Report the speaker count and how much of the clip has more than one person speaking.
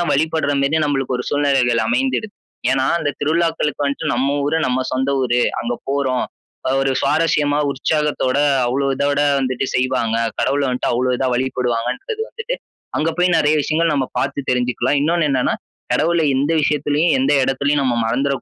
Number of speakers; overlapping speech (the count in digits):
1, no overlap